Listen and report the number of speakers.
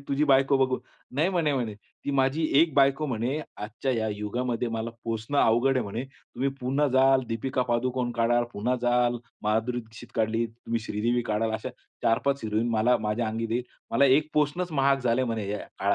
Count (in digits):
1